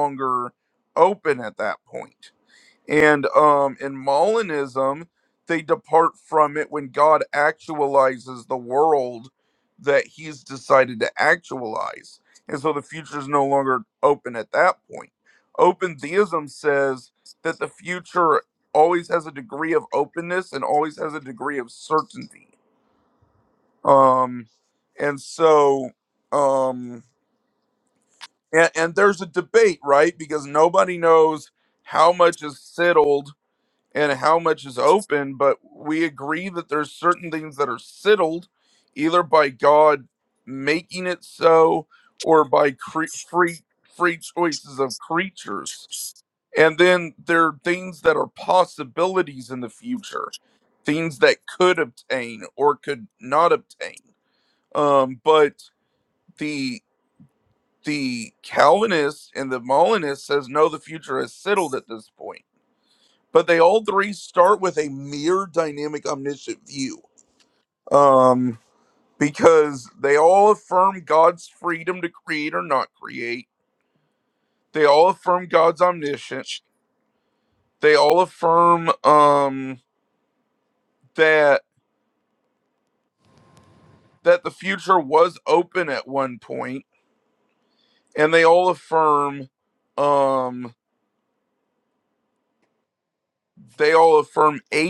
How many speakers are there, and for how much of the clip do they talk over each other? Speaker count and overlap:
1, no overlap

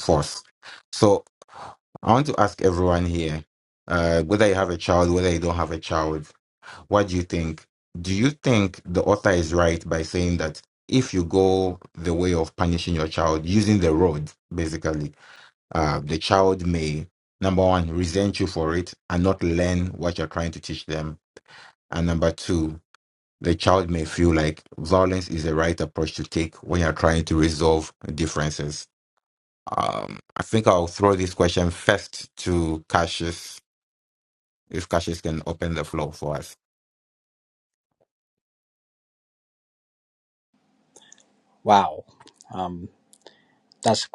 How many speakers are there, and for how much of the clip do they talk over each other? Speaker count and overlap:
2, no overlap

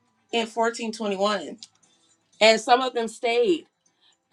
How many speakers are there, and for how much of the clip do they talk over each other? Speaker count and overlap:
1, no overlap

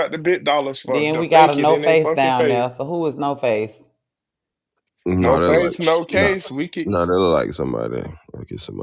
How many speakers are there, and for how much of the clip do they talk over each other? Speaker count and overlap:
3, about 29%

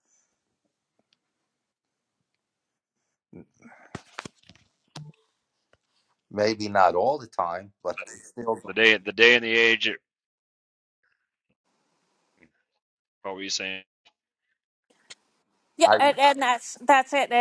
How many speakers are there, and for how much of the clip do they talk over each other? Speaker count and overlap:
3, about 2%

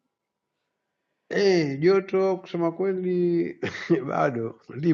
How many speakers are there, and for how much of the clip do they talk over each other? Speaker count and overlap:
1, no overlap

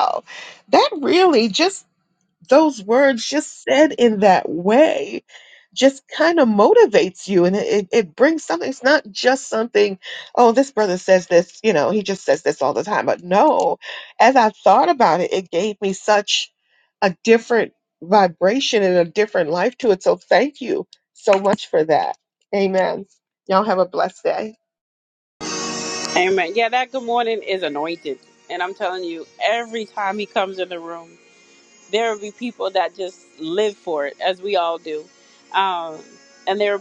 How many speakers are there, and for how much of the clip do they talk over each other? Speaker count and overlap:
2, no overlap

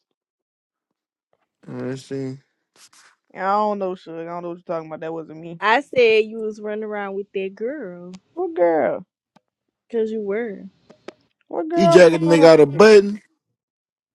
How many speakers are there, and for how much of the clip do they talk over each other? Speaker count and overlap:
3, about 8%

